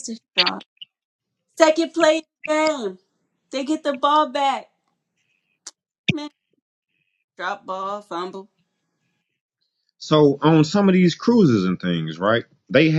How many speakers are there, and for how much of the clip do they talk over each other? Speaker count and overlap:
2, no overlap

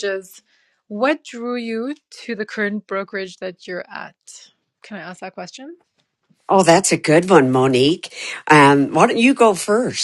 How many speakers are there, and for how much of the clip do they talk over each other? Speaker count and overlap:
2, no overlap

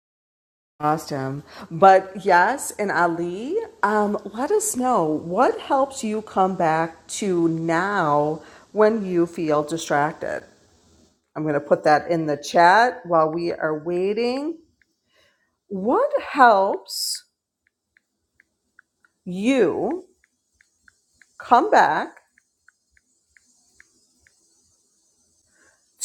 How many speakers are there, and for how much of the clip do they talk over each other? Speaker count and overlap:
1, no overlap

